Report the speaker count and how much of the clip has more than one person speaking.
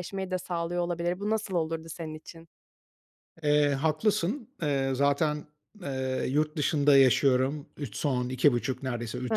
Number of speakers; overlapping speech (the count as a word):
two, about 1%